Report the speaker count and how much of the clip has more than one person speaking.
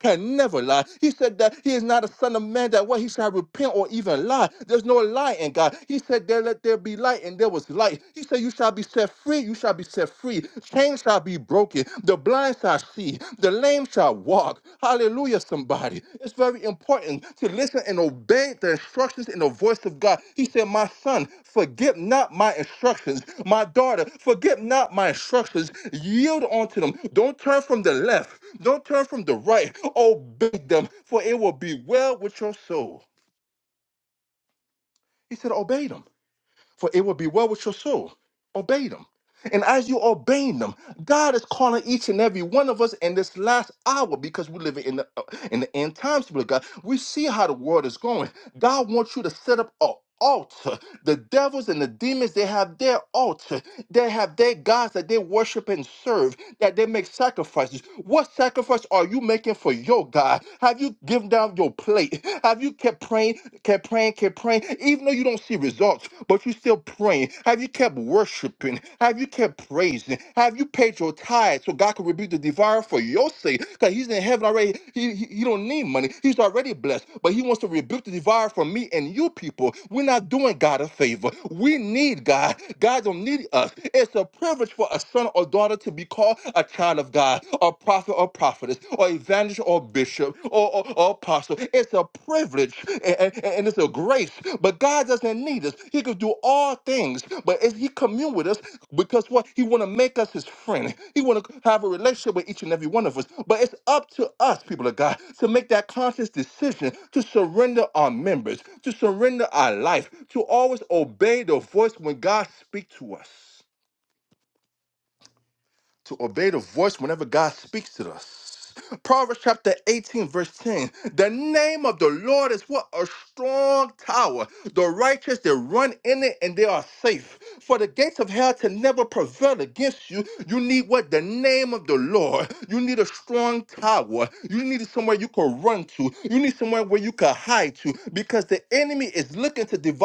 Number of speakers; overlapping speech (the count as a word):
one, no overlap